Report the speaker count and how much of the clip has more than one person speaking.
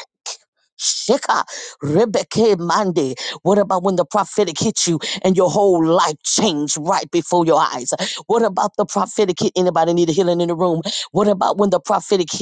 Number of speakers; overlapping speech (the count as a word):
one, no overlap